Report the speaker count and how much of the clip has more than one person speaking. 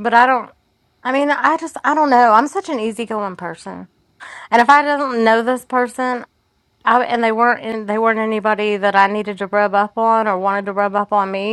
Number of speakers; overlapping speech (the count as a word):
one, no overlap